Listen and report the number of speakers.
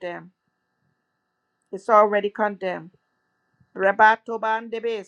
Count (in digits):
1